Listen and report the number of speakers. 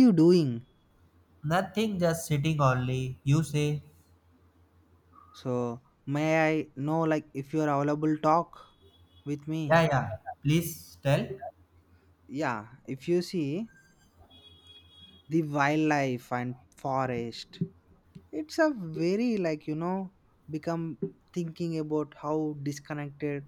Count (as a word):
two